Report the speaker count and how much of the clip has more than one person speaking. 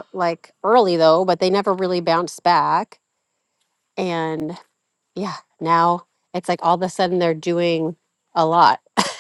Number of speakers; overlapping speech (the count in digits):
1, no overlap